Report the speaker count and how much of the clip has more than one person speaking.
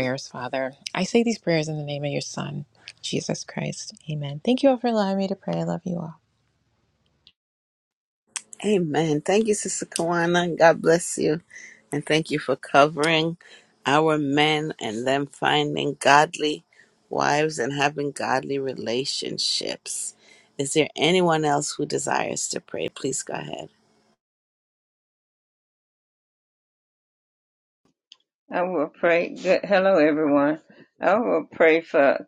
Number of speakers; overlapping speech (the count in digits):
3, no overlap